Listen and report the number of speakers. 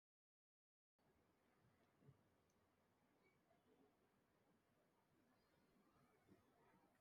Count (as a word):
zero